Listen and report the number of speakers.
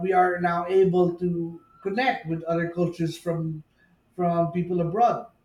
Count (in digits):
1